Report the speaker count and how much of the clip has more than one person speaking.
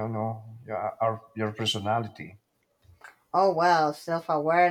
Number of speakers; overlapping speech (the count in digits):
2, no overlap